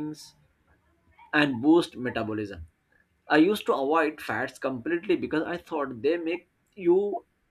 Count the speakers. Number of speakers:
1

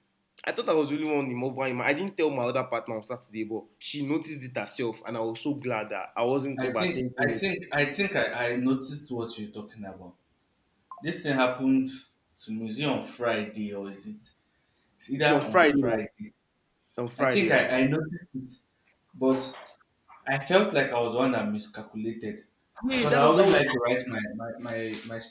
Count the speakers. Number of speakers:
2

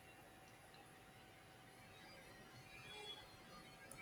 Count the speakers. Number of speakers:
0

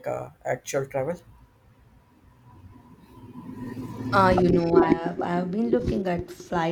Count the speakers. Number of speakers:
2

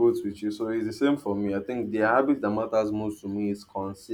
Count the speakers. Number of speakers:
1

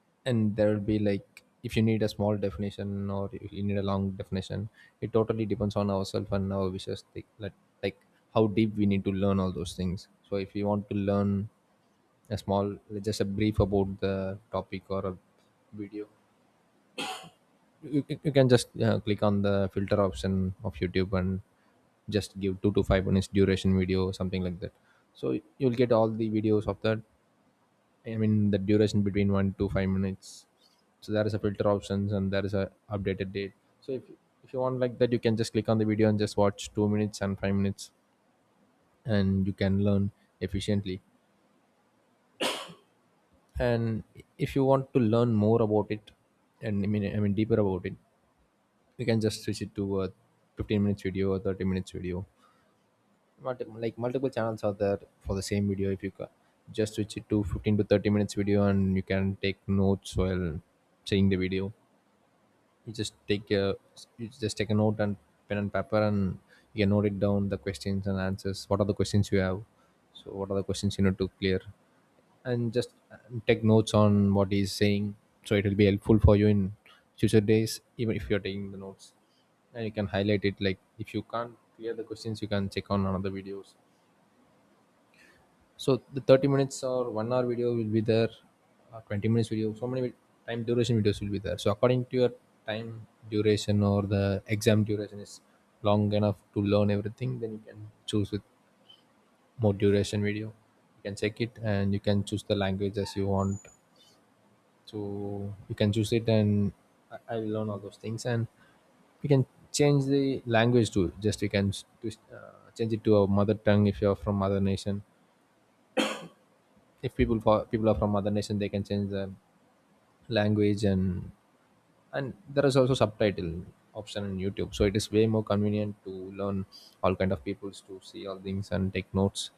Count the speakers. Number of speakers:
1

